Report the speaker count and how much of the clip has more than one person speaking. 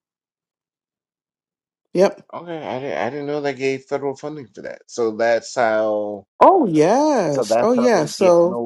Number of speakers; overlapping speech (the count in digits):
2, about 14%